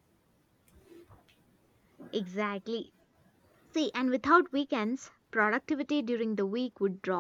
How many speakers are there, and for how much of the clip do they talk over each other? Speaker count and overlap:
1, no overlap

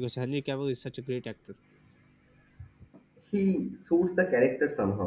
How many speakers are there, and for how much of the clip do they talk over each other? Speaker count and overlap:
2, no overlap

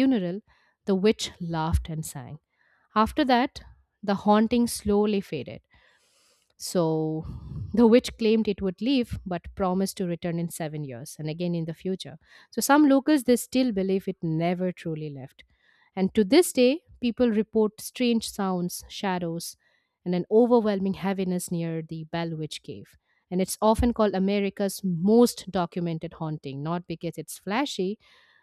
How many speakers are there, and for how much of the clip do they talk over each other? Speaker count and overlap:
1, no overlap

